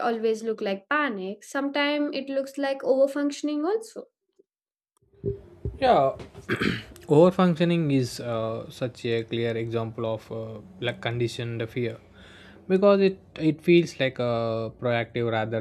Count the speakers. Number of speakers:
two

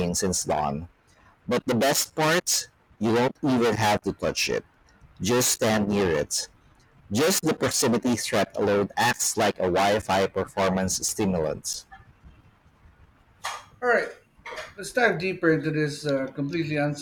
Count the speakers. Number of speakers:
two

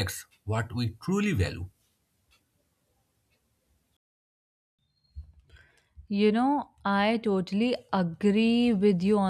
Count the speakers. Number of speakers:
two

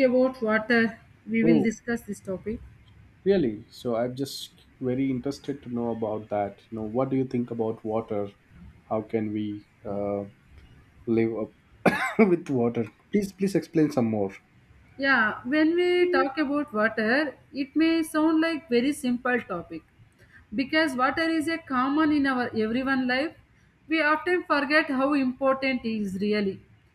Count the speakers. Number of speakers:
two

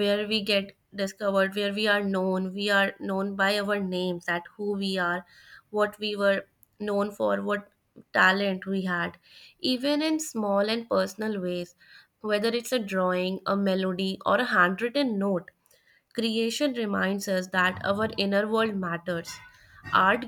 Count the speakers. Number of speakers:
one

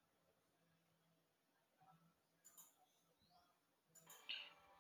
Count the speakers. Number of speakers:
zero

